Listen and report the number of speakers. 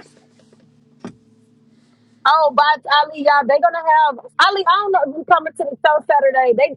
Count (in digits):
1